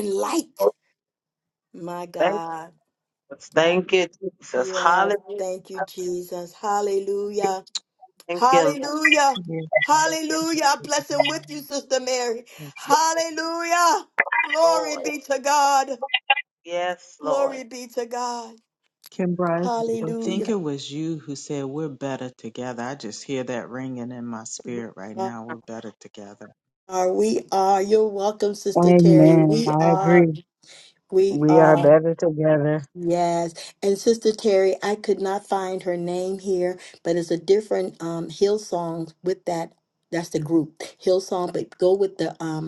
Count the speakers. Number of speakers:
4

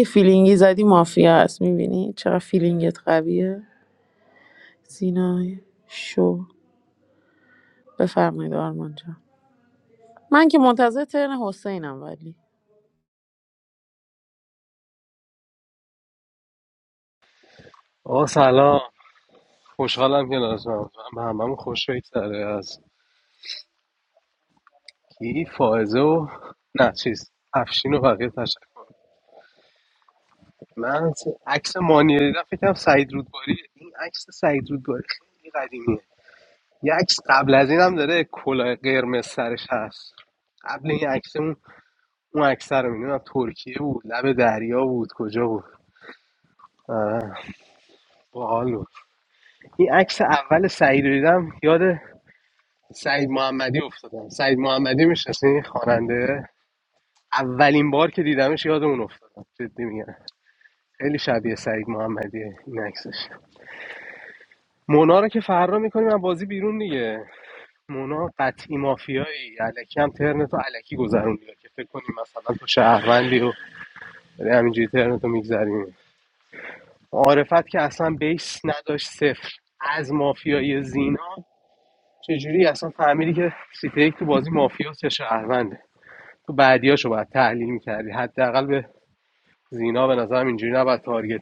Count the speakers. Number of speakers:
2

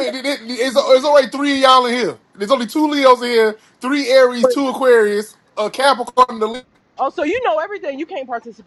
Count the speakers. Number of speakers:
2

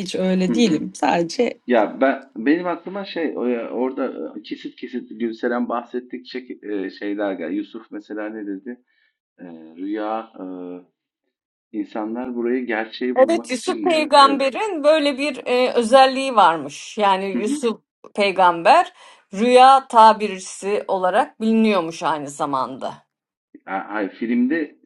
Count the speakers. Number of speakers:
3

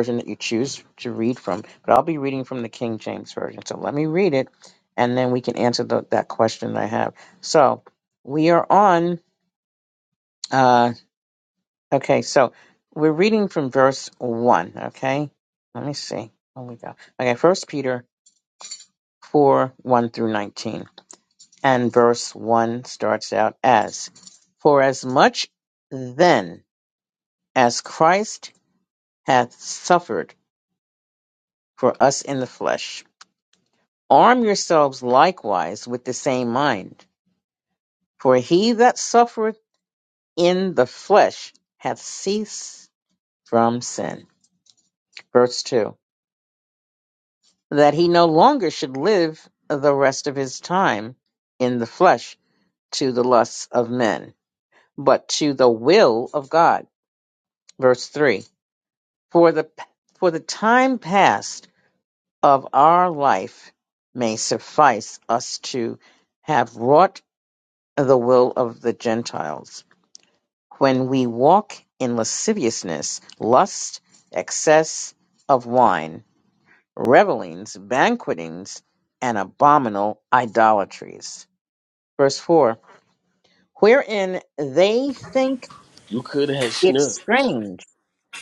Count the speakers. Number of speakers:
2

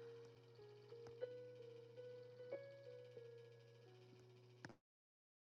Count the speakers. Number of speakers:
0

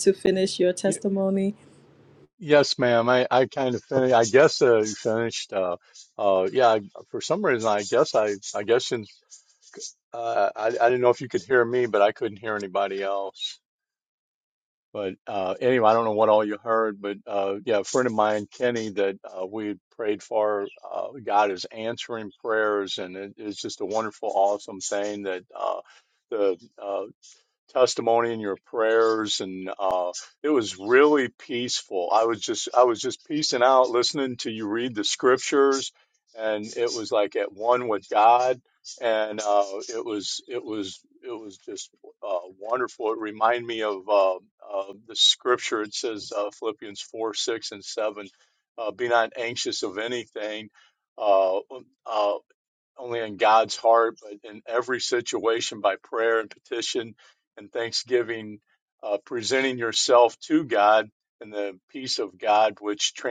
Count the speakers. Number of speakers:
2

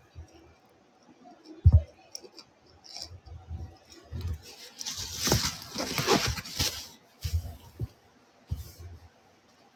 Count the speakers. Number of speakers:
0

